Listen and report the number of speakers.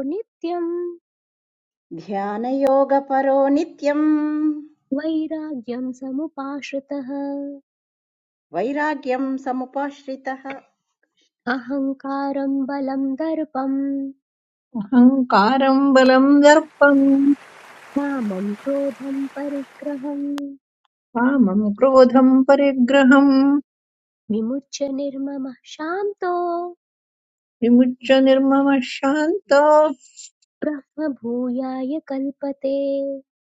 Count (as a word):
three